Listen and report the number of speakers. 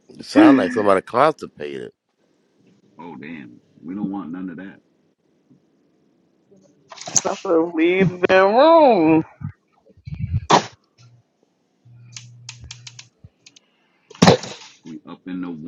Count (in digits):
3